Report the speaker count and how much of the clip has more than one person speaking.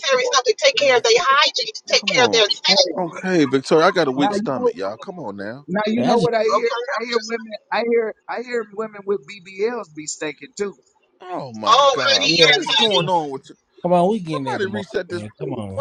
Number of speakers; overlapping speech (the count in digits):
4, about 29%